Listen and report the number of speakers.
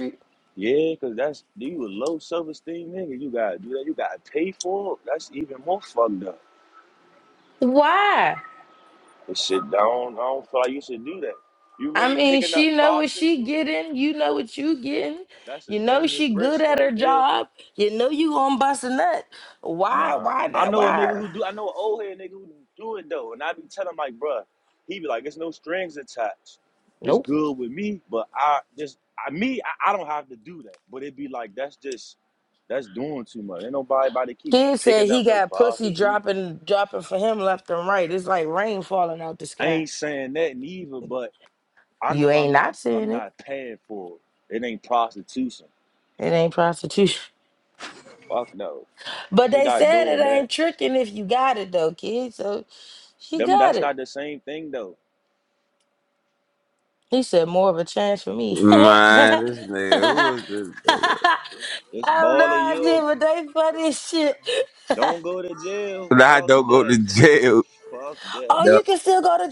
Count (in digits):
3